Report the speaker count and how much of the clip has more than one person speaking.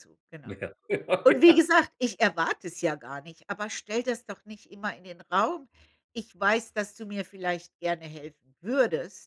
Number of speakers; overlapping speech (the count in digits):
2, about 5%